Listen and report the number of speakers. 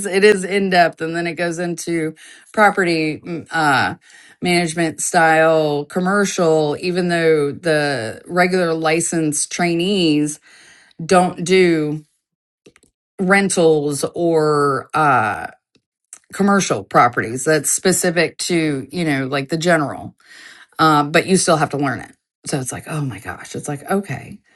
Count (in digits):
1